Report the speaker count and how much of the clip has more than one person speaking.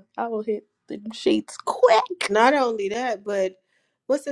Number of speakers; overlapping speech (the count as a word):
two, no overlap